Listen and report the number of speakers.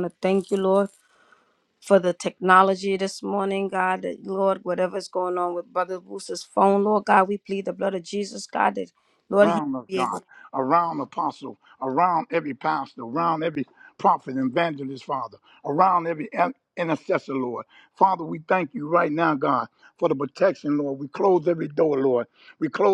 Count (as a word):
two